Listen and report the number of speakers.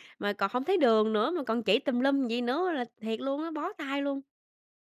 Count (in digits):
1